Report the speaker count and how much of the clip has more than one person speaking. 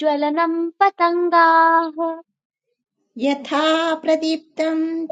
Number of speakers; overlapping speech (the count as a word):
two, no overlap